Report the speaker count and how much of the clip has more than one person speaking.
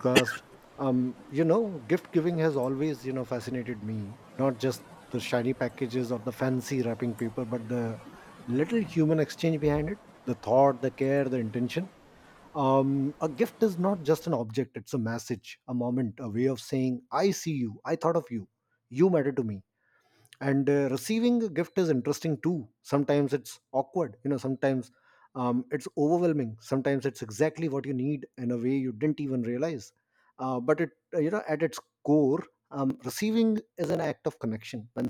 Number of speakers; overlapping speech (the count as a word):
one, no overlap